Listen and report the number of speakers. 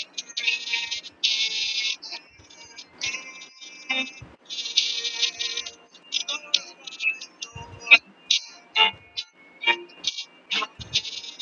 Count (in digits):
0